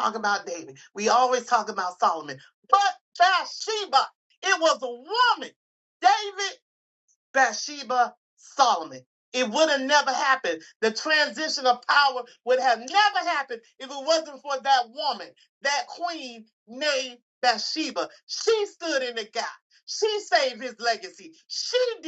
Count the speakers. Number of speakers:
one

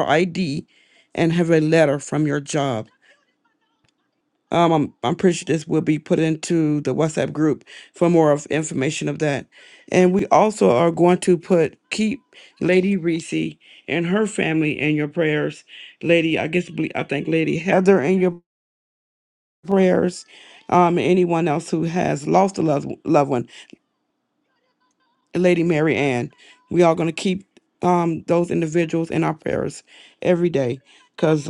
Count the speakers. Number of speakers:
one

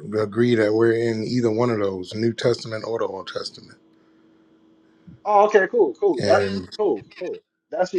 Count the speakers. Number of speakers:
two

